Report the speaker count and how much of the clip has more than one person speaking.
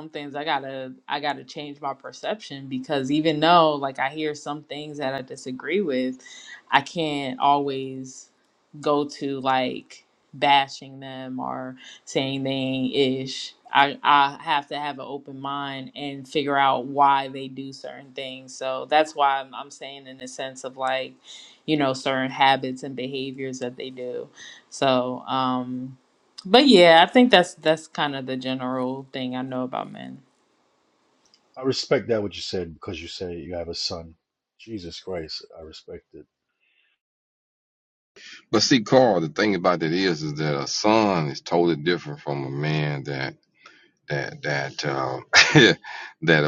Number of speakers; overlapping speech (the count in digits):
3, no overlap